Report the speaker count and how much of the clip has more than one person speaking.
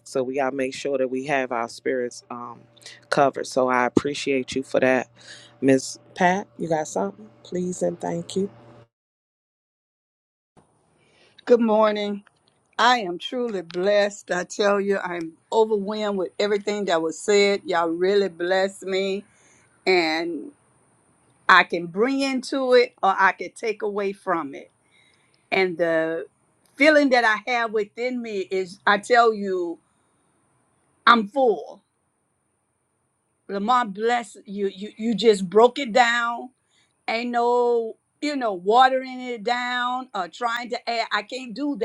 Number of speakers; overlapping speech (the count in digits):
2, no overlap